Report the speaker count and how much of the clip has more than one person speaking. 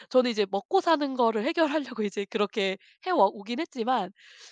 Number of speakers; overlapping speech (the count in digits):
1, no overlap